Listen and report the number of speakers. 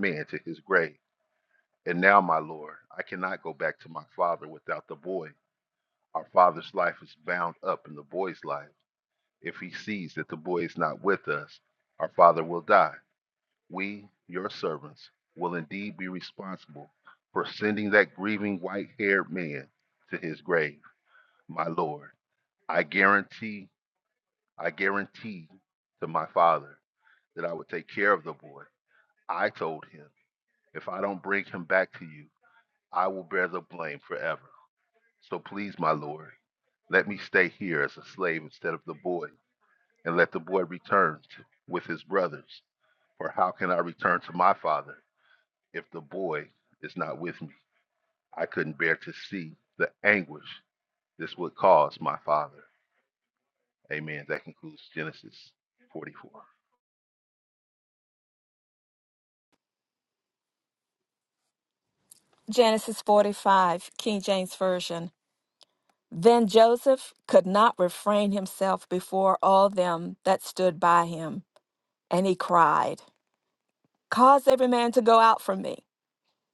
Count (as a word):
two